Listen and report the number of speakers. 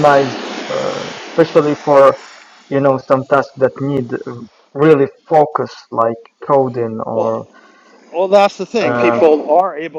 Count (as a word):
two